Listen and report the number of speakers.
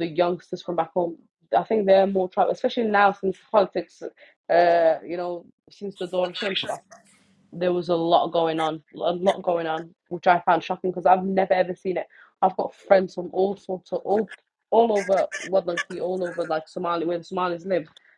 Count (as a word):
one